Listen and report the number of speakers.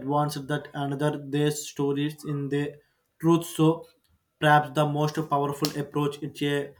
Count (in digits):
1